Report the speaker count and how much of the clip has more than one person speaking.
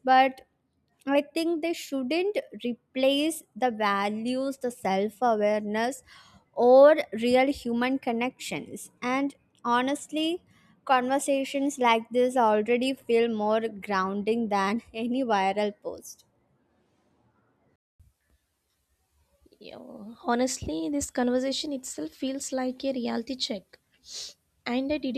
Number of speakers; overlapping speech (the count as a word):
two, no overlap